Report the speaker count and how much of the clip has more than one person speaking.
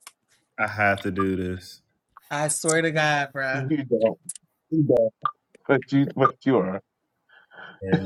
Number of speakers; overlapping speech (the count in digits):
3, about 1%